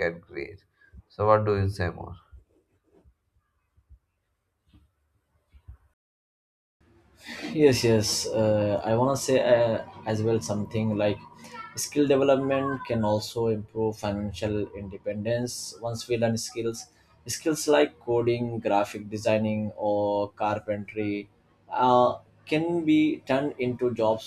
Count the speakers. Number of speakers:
two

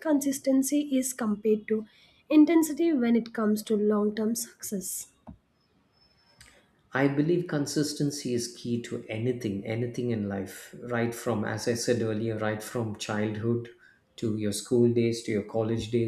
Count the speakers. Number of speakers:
two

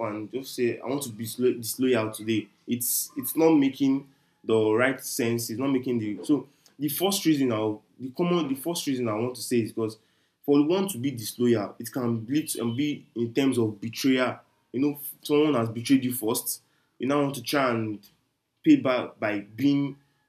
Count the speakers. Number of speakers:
one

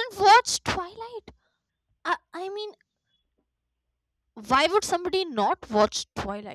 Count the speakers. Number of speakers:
one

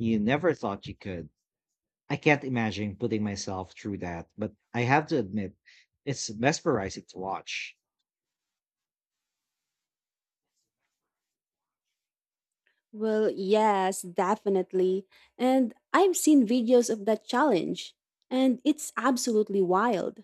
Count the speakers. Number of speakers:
two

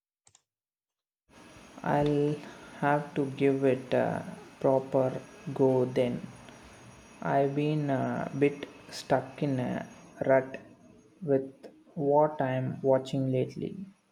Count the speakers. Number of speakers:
one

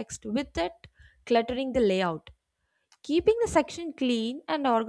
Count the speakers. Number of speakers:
one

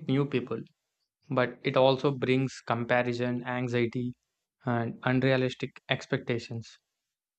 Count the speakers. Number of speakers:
one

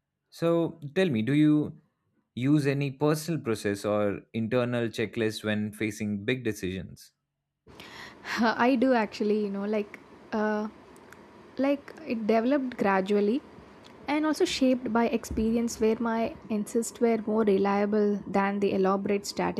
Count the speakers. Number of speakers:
two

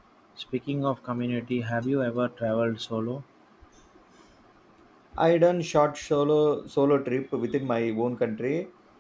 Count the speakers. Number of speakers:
two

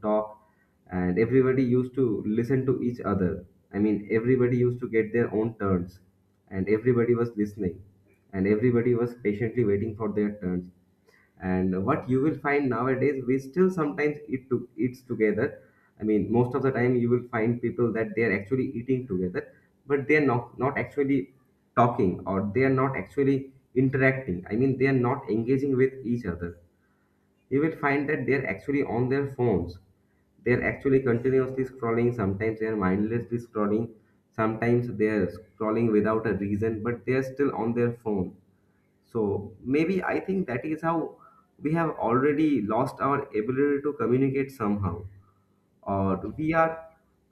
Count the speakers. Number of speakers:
one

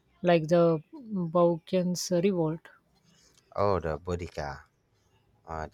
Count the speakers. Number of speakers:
two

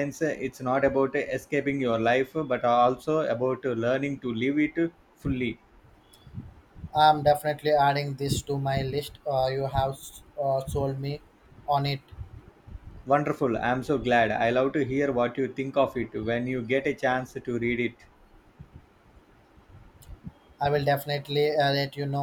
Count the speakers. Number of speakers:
two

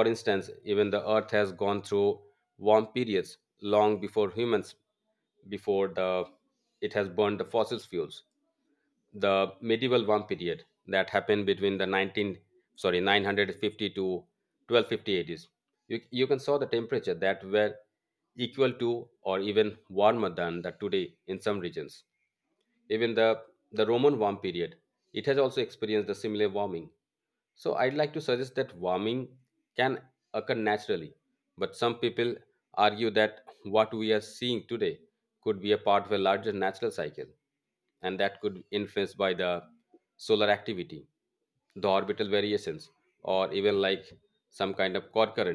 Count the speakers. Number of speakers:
one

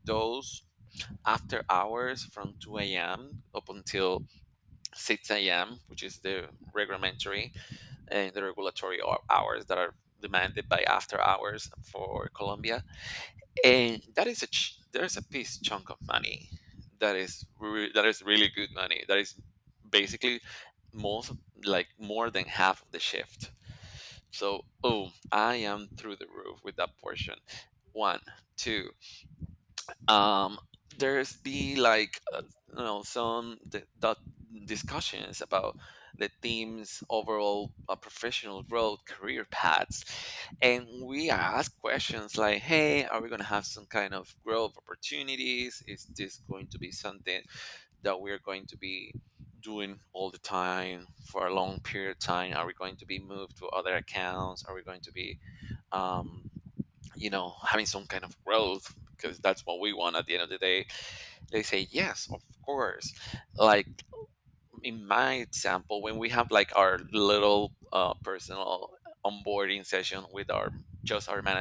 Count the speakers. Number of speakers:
one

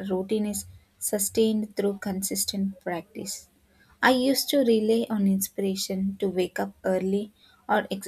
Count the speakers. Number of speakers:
one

